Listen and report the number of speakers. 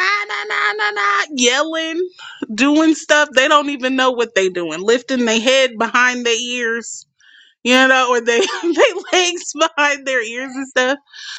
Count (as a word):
one